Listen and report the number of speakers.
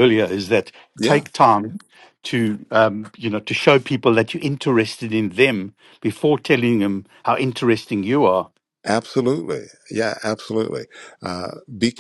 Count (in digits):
2